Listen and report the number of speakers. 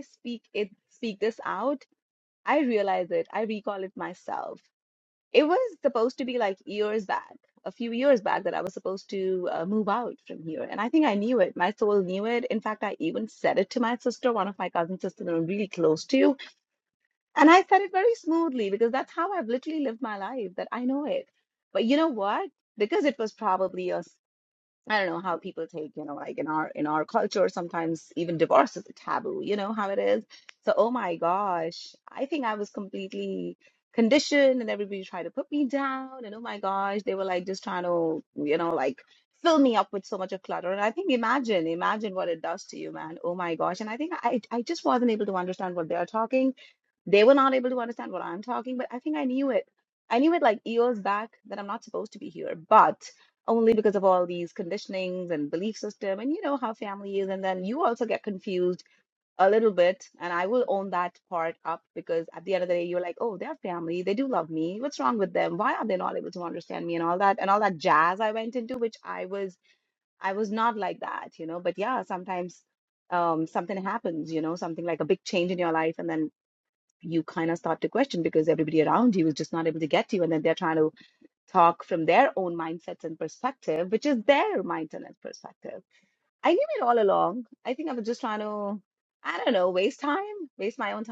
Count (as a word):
one